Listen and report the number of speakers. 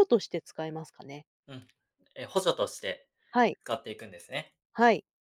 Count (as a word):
two